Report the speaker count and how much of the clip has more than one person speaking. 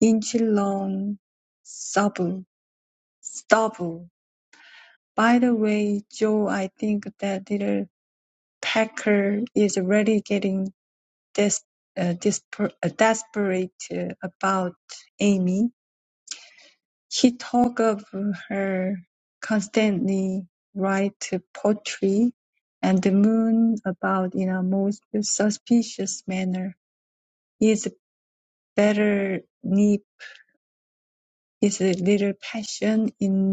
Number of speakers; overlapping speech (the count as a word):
one, no overlap